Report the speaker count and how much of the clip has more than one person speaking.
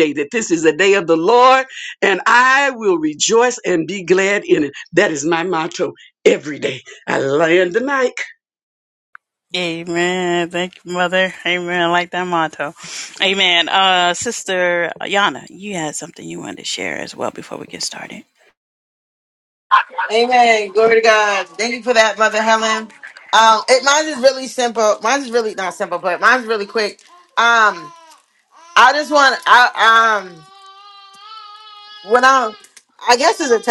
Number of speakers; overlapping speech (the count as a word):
three, no overlap